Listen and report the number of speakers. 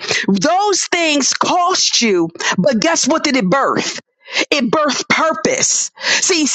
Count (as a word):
one